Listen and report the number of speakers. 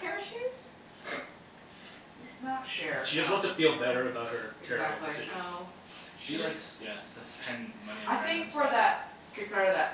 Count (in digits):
4